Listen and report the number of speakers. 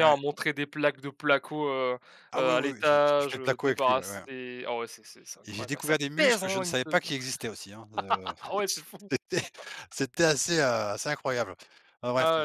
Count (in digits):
2